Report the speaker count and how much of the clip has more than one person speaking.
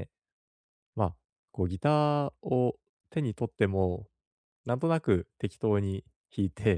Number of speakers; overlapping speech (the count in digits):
1, no overlap